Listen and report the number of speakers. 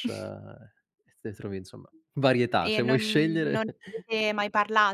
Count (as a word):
two